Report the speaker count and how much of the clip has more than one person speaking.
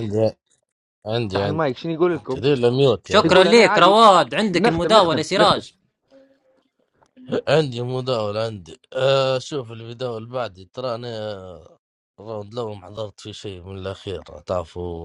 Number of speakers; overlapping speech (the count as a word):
three, about 15%